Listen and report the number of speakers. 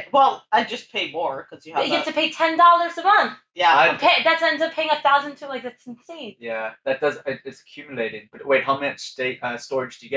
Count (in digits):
3